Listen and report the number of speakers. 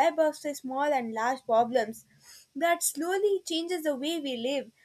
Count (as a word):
one